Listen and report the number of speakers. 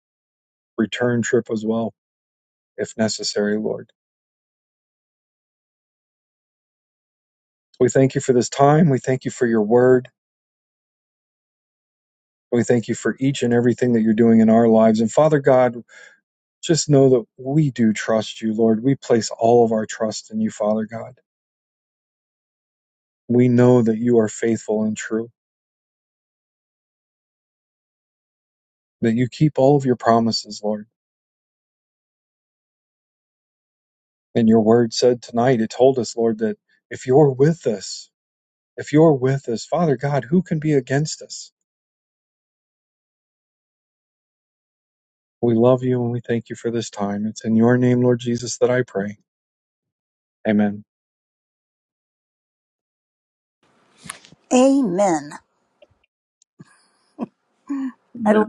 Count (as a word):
two